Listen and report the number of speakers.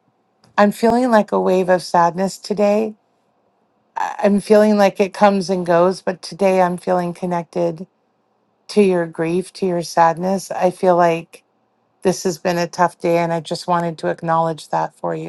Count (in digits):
1